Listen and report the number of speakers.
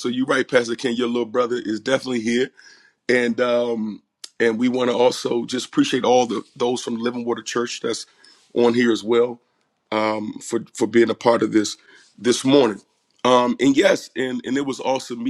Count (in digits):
1